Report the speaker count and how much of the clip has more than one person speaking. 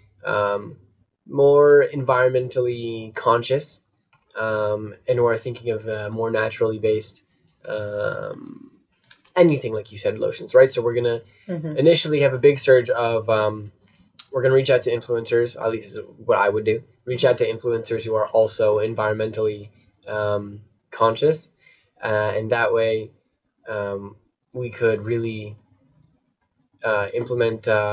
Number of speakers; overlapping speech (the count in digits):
1, no overlap